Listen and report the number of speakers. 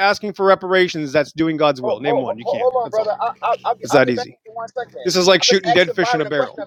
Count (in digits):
2